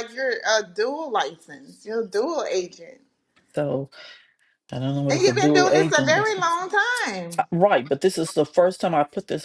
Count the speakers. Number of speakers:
two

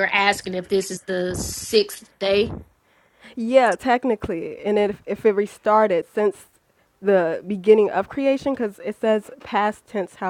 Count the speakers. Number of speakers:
two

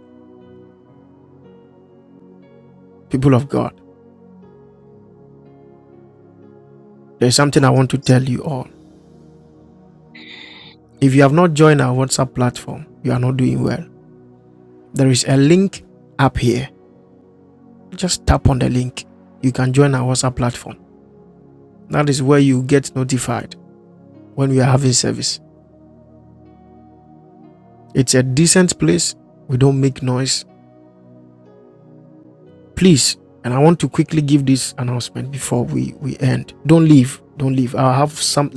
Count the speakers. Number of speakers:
one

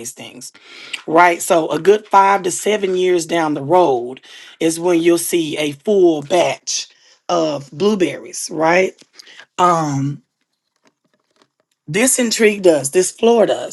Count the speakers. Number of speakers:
one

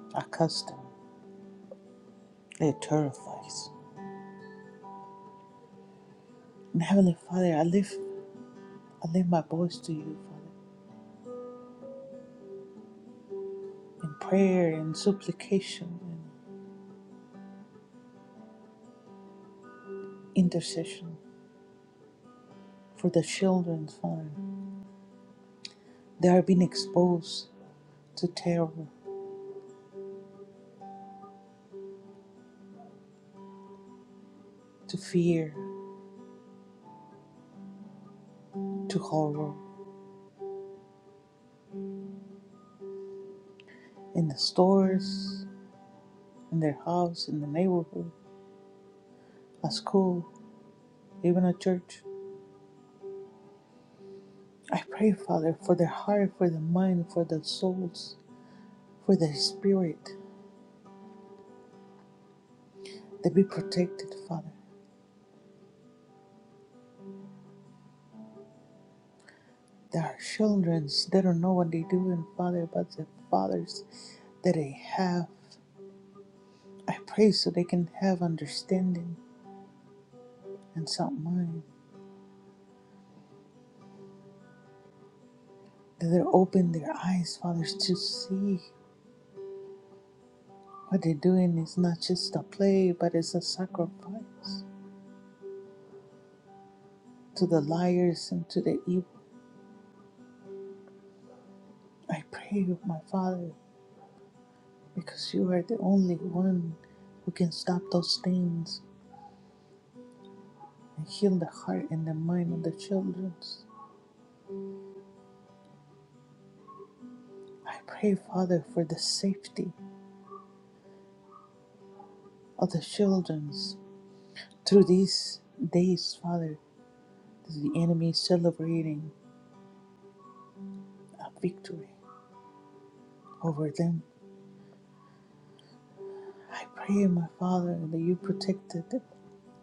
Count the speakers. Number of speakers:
one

